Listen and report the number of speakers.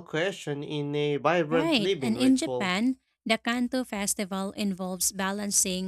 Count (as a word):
two